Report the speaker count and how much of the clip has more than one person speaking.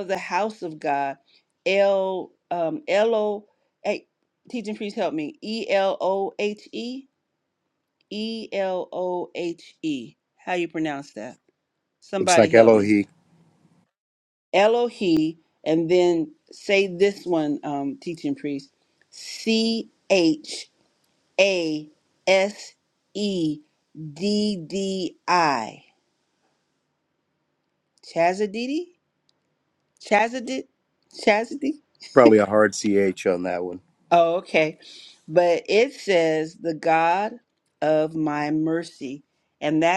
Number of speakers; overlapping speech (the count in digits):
2, about 2%